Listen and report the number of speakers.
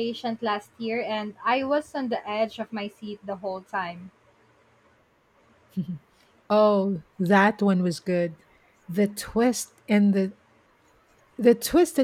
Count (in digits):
2